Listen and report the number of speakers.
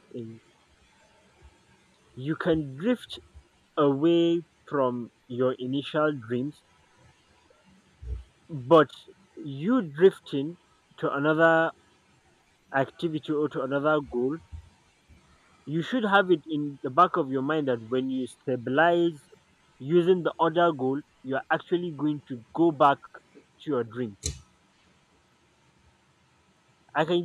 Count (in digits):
1